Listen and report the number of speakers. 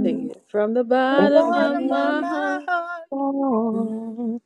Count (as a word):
three